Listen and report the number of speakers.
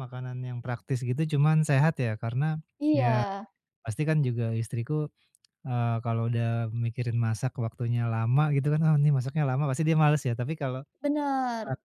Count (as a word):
two